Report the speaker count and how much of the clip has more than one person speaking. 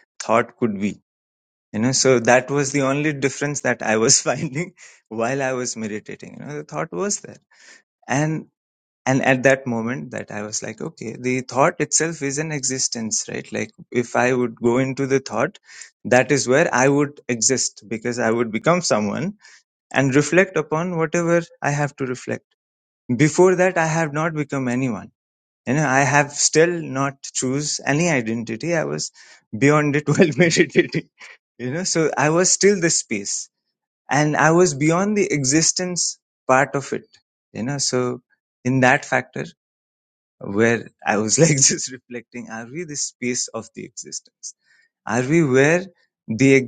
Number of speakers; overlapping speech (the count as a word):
one, no overlap